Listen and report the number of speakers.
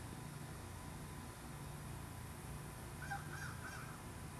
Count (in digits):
0